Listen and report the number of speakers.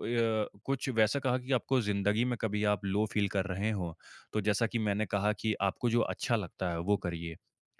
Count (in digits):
1